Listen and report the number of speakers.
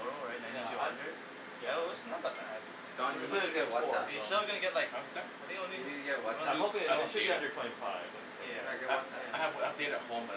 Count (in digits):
4